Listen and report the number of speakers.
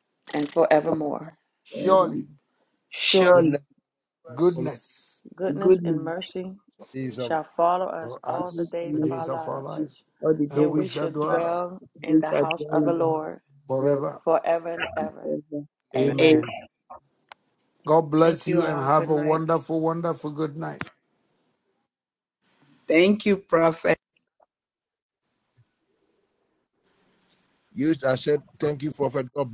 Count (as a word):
four